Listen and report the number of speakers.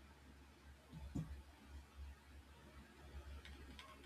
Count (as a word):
zero